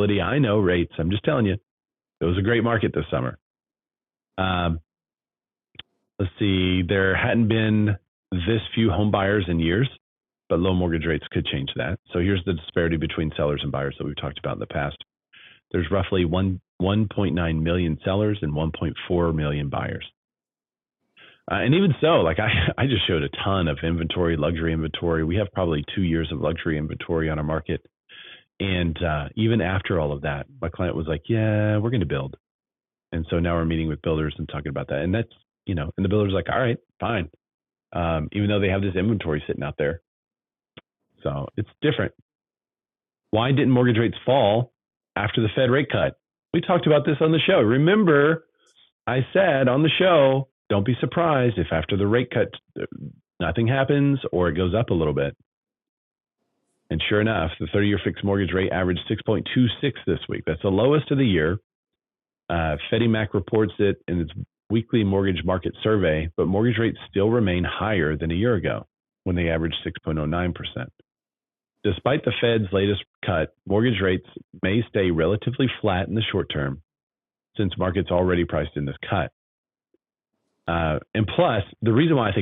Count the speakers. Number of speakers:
1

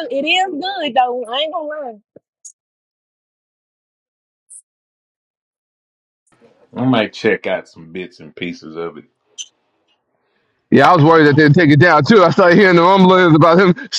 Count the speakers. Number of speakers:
3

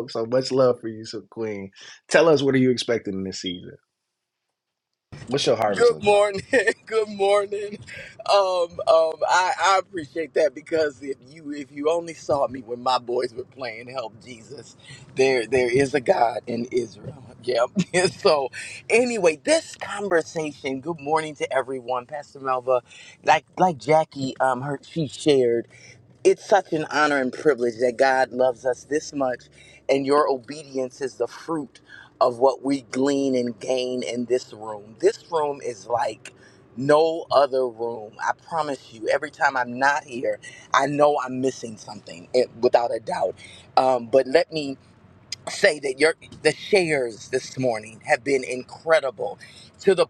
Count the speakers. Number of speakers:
2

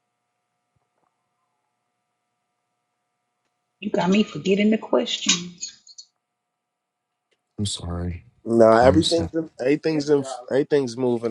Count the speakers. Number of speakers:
3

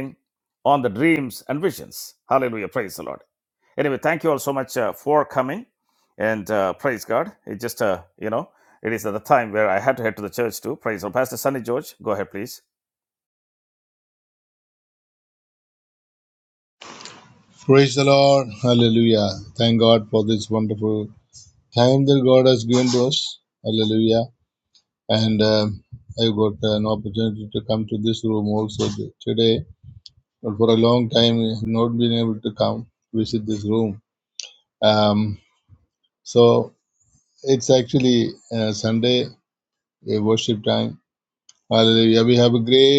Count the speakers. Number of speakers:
2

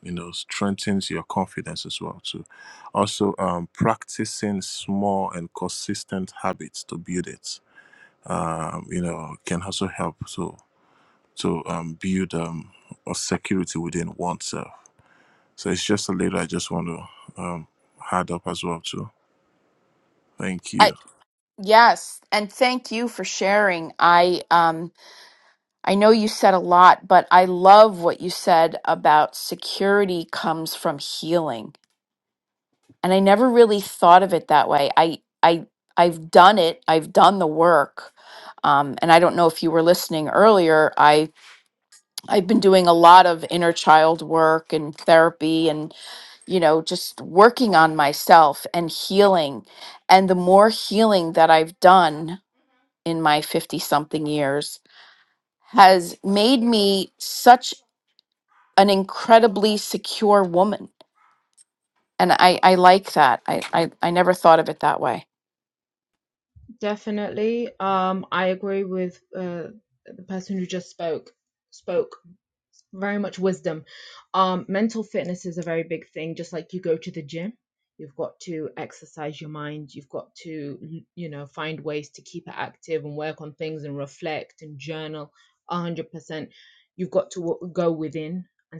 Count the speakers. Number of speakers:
3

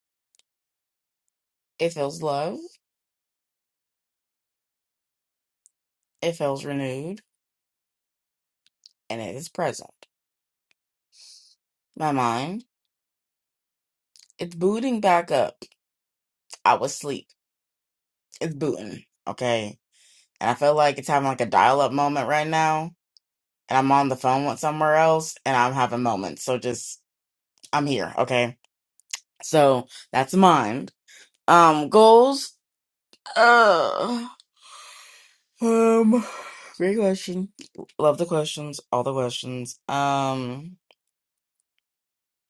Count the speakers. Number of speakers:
1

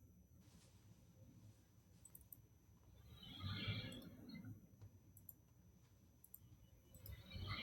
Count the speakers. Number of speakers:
0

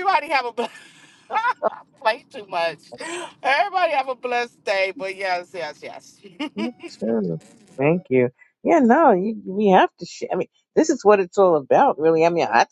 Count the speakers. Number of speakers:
2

